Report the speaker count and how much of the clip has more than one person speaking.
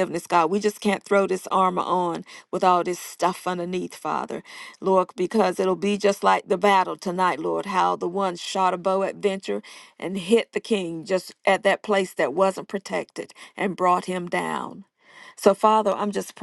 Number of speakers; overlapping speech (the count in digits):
1, no overlap